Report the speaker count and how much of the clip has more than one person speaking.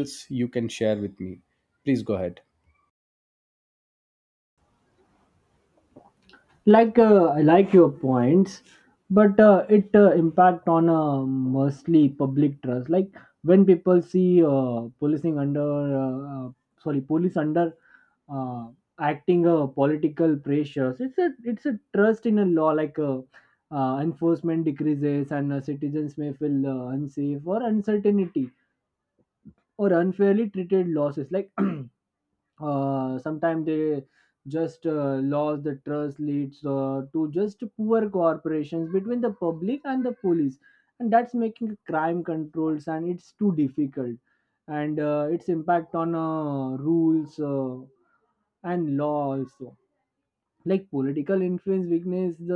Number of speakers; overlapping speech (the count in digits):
2, no overlap